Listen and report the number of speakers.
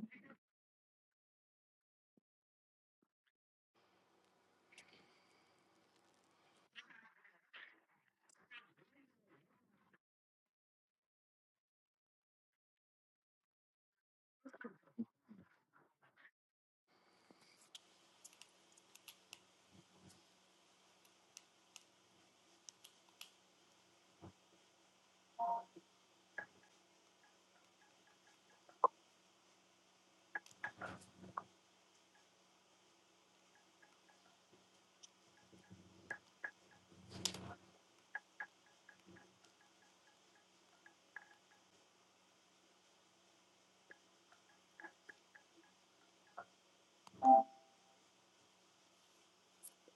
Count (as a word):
zero